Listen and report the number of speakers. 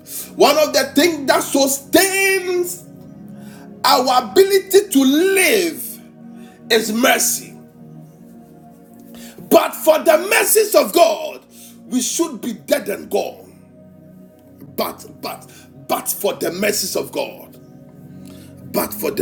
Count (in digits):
1